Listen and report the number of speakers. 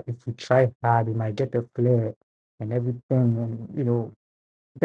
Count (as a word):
one